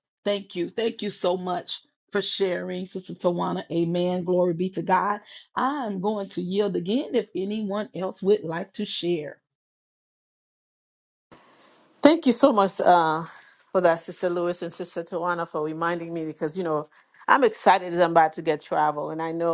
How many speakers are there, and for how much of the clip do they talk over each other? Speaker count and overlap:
2, no overlap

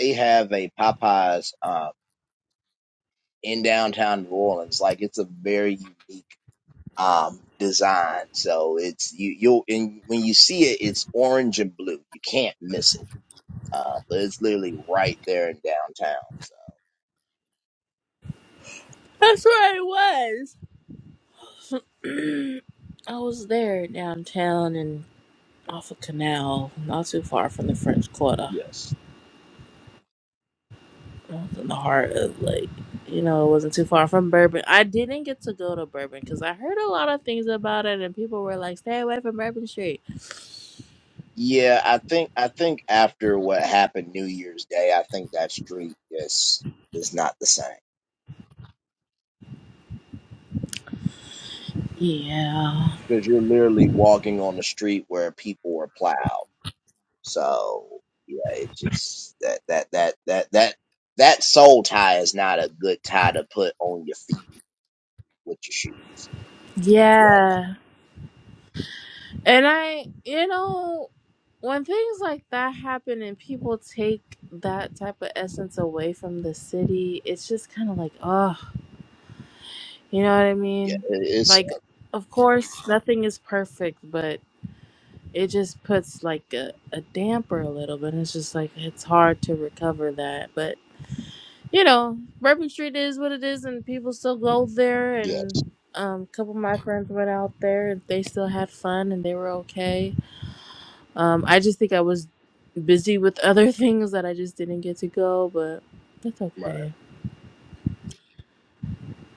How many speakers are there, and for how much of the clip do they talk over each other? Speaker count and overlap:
2, about 1%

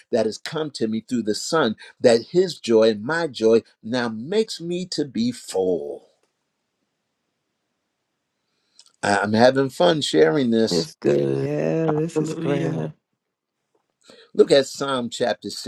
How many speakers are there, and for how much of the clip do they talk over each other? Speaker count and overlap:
3, about 6%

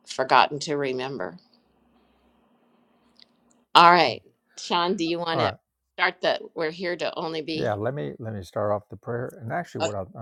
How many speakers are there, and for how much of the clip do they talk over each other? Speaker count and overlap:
2, about 4%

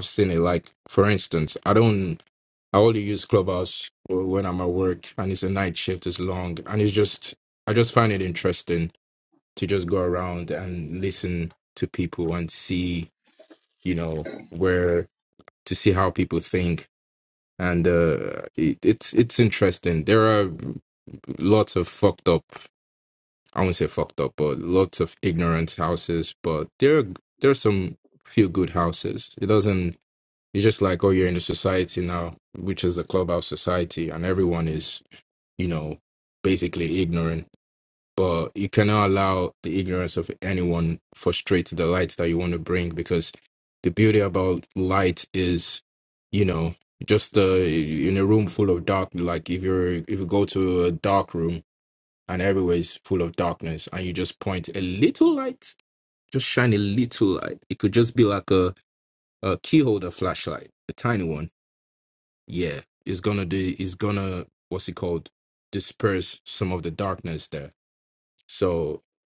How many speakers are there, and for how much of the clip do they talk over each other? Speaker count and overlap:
1, no overlap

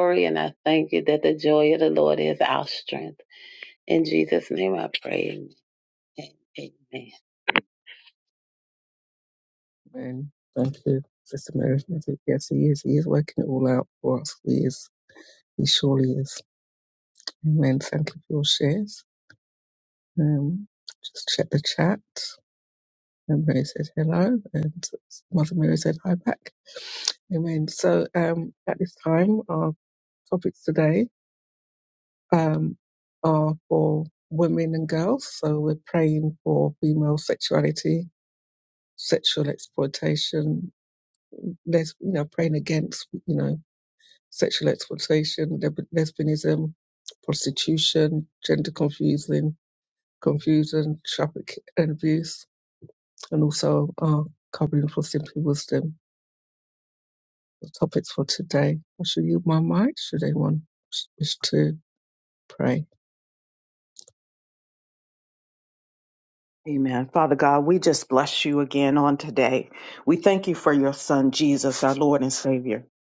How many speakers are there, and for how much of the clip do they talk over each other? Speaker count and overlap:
3, no overlap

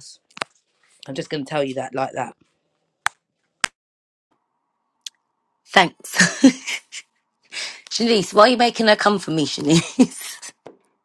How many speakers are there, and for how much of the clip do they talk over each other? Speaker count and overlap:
2, no overlap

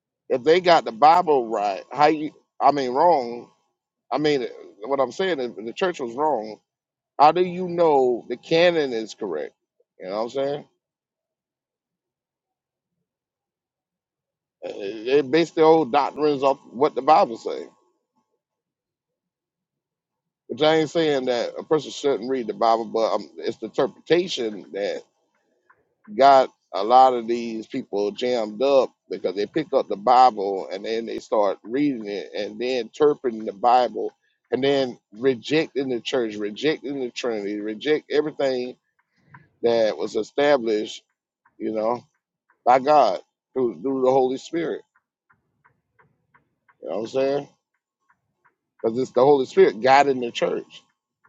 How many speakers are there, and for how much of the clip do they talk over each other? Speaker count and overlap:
1, no overlap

